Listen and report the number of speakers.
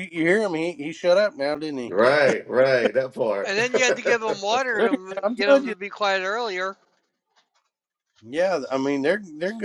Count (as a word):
three